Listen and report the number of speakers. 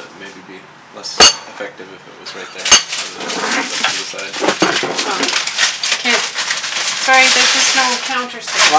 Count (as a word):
two